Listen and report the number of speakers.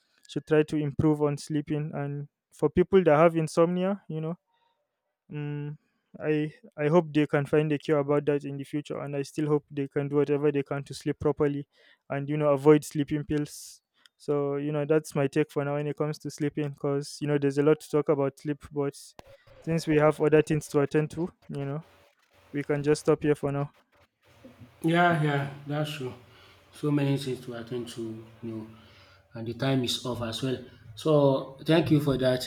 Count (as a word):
two